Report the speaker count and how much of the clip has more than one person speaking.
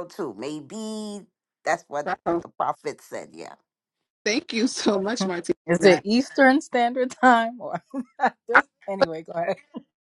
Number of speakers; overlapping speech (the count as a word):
three, about 5%